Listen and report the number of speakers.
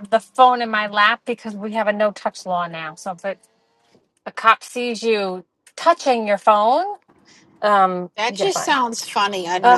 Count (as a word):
two